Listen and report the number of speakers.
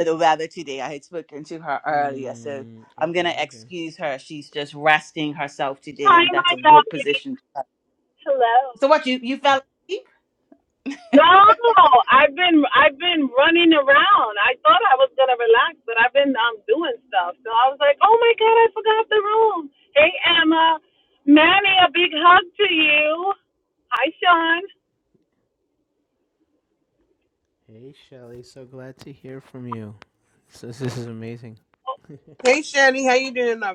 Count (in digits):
4